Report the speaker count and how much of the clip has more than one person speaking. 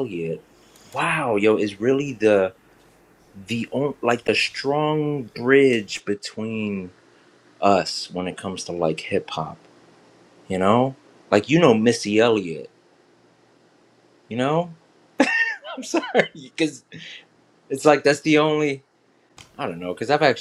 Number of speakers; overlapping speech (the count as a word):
one, no overlap